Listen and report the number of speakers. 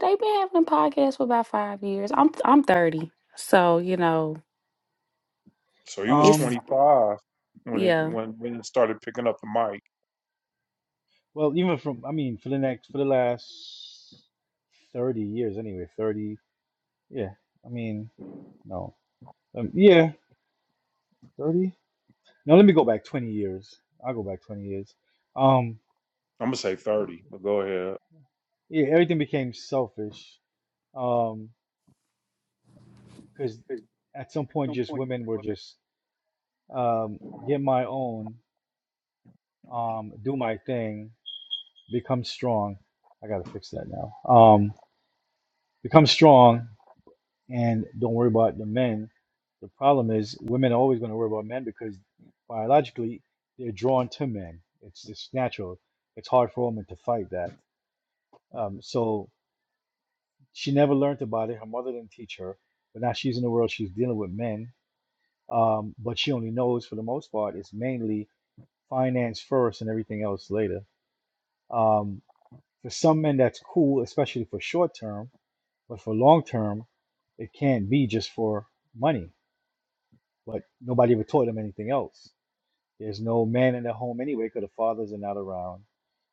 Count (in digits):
3